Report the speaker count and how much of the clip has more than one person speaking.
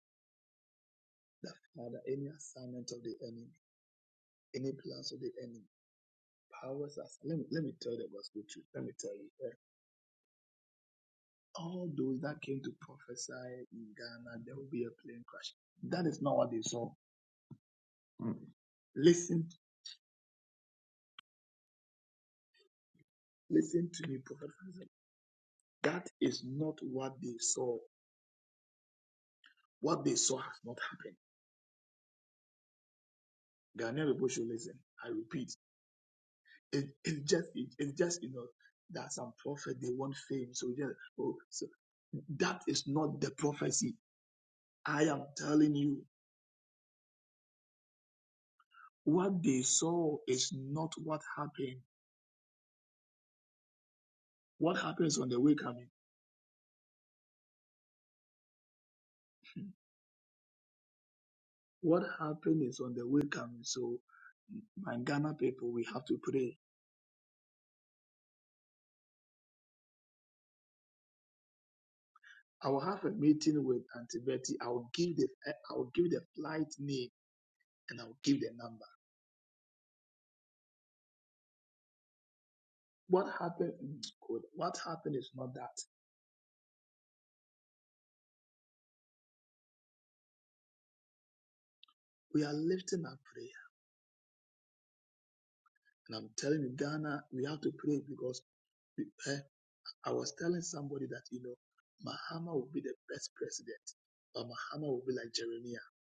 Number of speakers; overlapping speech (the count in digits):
1, no overlap